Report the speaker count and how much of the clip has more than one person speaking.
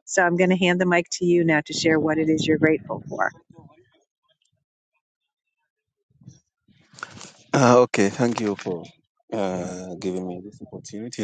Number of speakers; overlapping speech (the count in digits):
2, no overlap